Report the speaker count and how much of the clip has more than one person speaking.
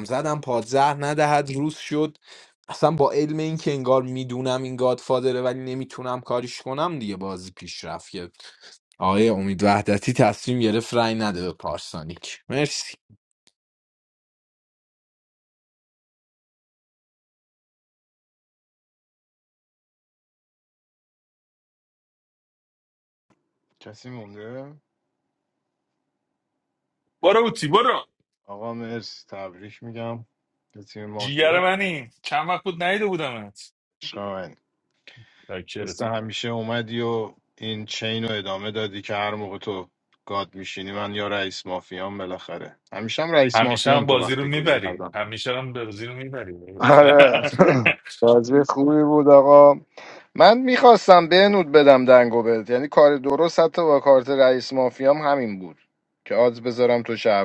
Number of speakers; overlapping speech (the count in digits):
3, about 3%